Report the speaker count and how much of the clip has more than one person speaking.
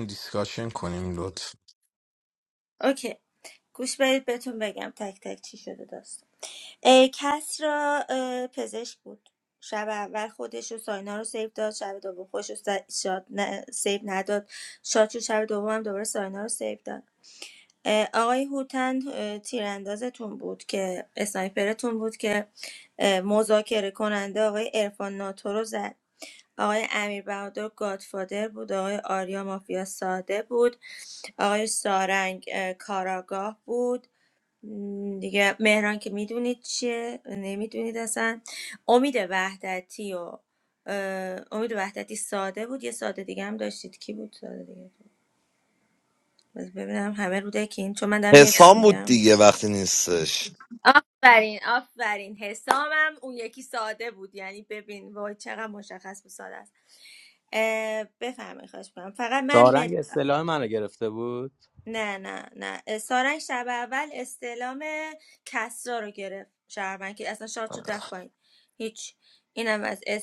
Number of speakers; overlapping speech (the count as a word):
four, about 2%